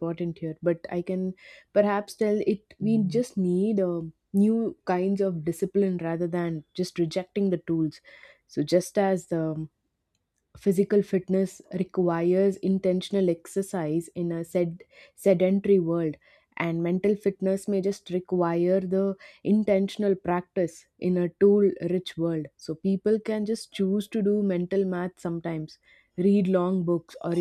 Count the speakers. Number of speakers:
1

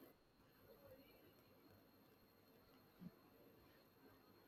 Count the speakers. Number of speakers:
0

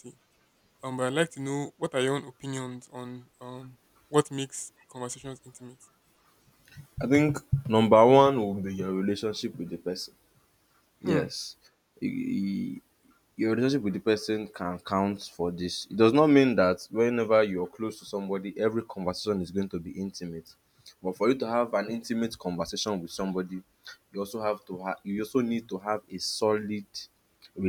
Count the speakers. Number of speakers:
2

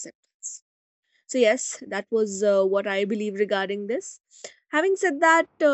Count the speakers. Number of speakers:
1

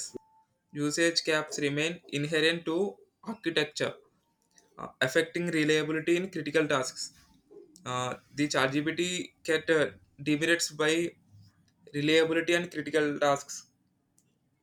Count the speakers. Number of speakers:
1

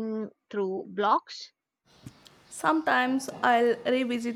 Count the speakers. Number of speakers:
2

